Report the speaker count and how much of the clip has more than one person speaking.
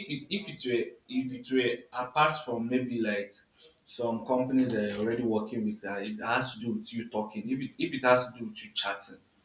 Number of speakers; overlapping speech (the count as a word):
one, no overlap